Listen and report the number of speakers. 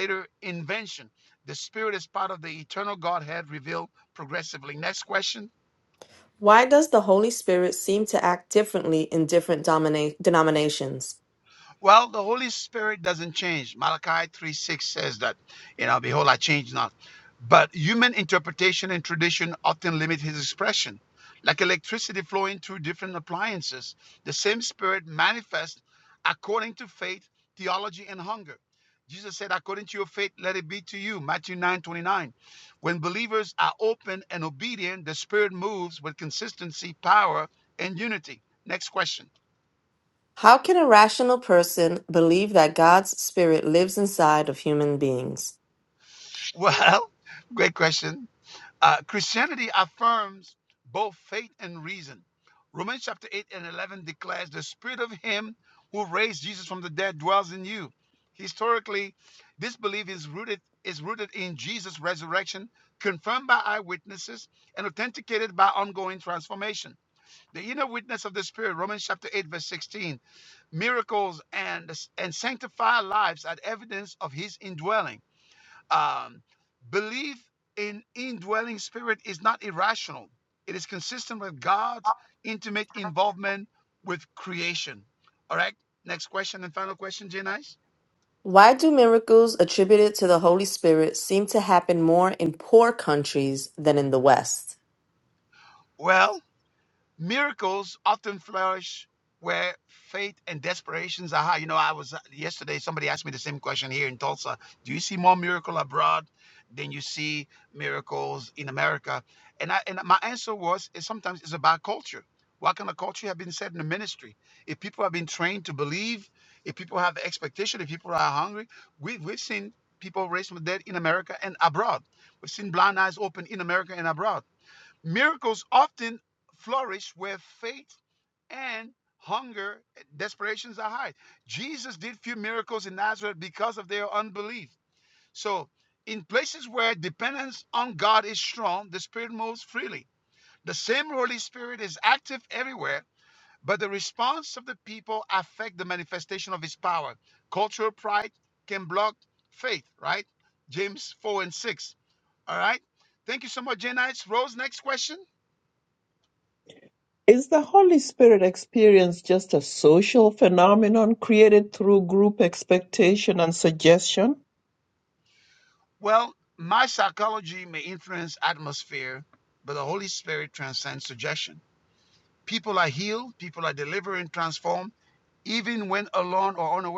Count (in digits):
3